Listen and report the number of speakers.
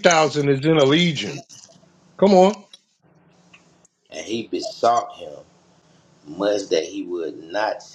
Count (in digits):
2